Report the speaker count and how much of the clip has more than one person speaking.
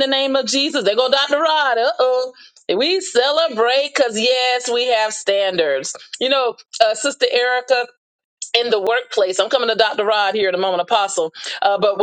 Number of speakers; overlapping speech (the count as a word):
one, no overlap